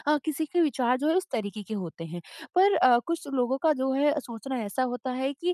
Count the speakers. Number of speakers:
1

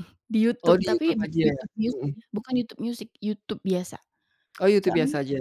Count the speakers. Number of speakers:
2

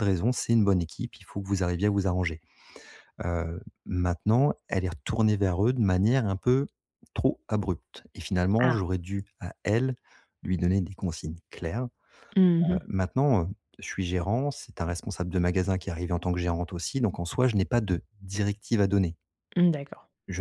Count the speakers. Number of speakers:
2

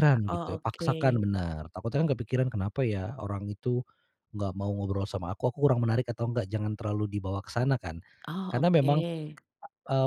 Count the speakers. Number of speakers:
2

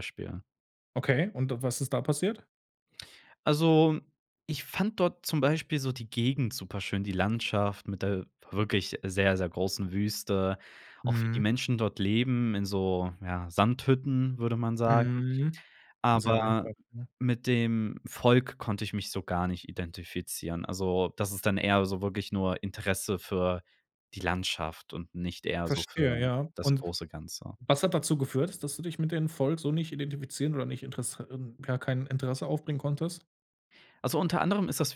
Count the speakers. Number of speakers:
2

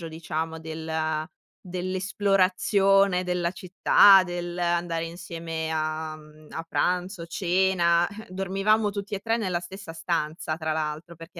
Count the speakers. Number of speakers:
1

